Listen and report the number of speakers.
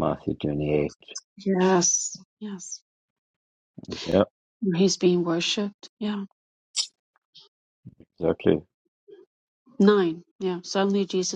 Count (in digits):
2